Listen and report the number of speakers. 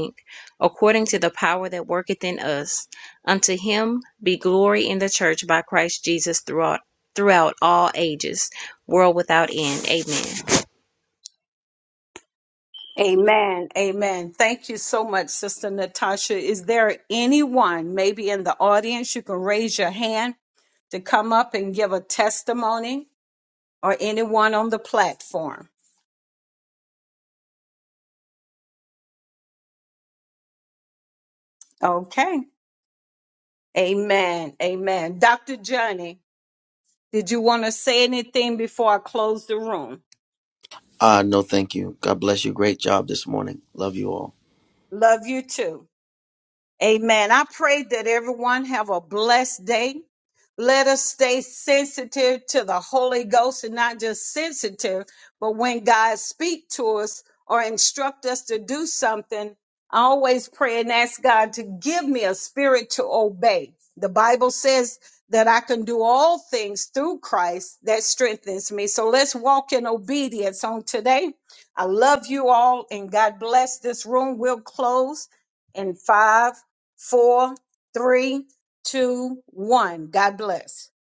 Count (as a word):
three